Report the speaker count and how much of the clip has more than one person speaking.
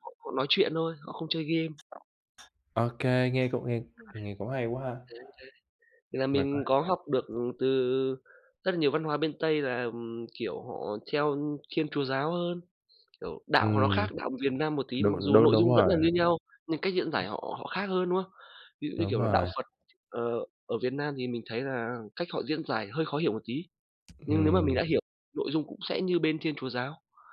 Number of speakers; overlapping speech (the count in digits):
2, about 9%